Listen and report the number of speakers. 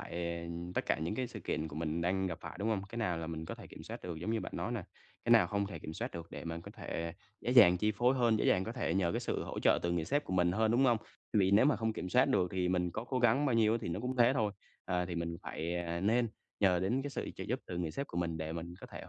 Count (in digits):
1